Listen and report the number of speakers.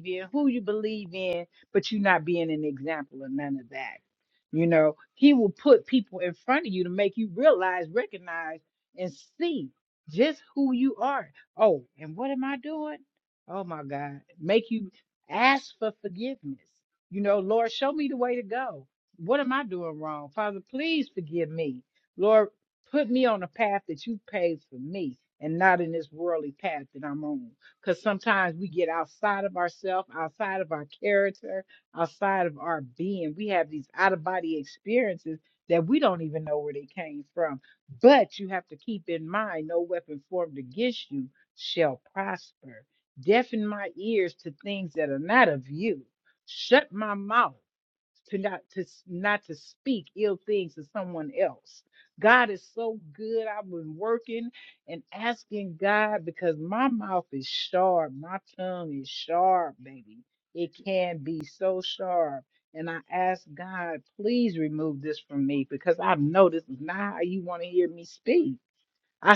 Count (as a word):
one